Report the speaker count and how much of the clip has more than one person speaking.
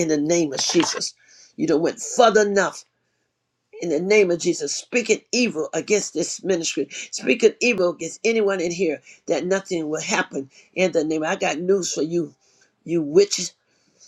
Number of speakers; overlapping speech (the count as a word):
one, no overlap